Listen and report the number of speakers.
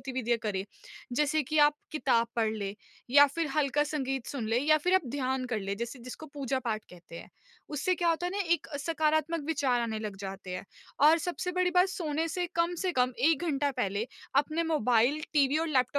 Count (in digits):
1